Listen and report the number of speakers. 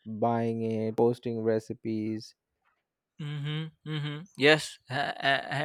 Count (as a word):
two